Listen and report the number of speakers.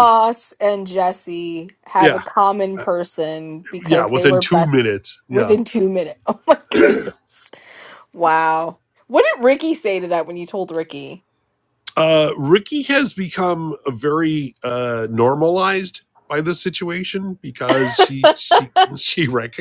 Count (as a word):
two